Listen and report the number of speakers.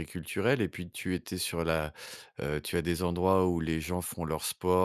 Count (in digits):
1